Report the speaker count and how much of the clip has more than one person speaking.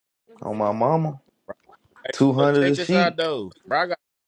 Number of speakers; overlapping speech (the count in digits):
2, about 27%